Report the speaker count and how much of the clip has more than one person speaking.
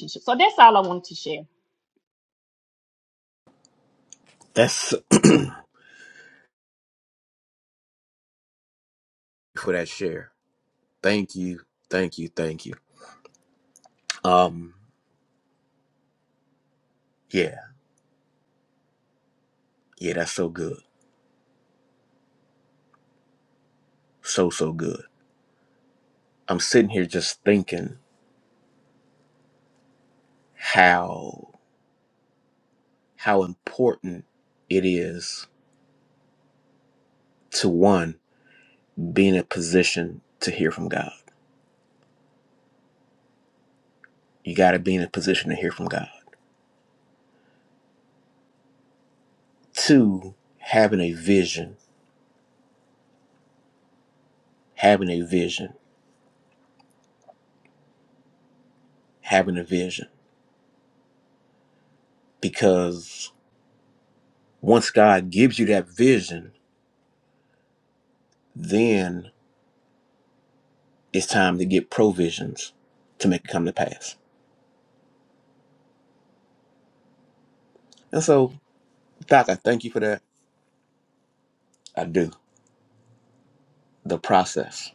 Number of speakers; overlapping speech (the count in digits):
2, no overlap